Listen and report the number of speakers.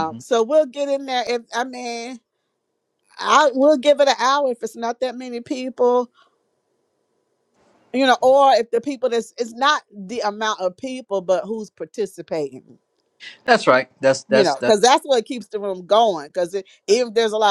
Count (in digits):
2